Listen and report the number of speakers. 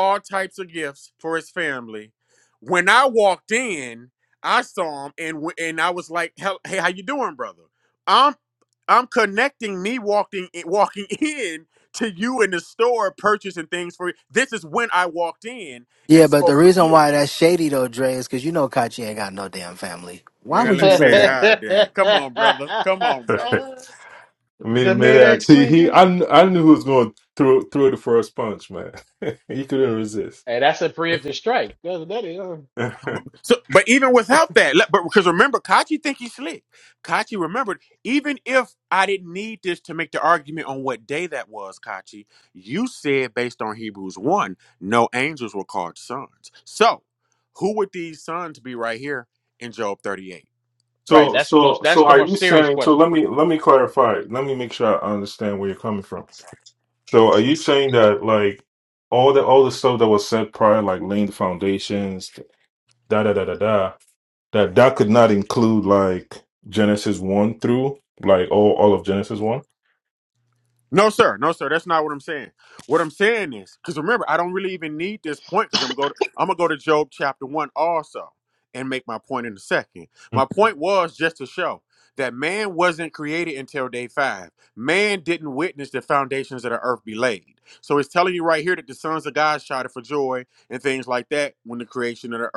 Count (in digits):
4